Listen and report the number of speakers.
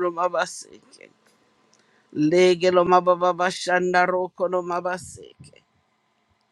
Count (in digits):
1